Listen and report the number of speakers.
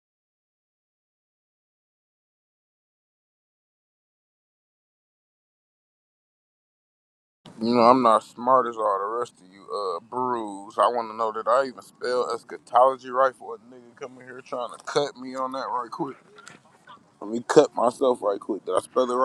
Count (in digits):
1